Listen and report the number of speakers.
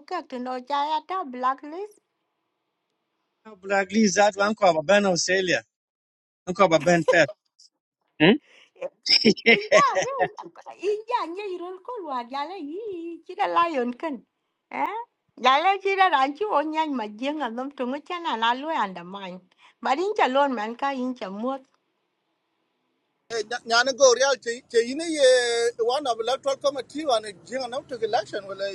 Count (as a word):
three